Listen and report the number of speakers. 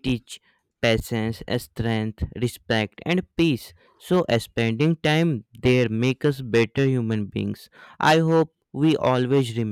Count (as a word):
one